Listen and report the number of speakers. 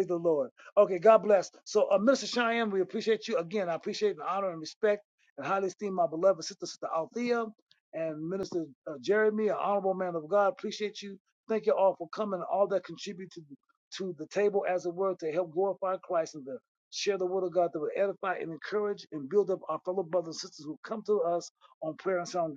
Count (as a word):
one